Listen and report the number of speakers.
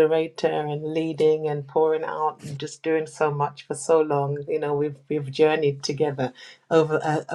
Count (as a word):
one